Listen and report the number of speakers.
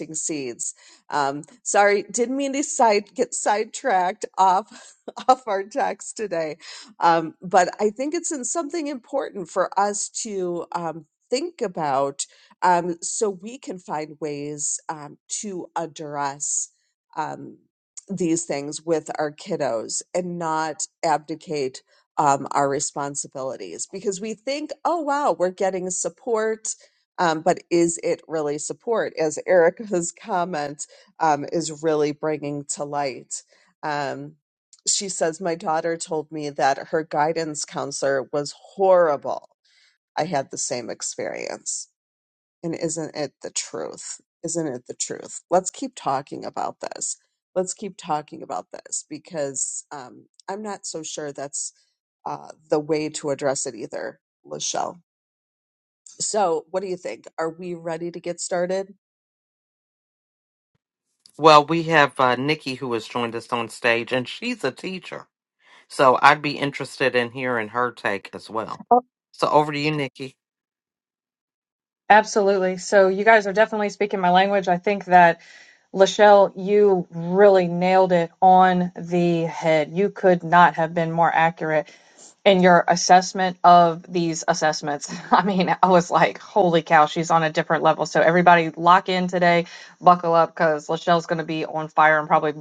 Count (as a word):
three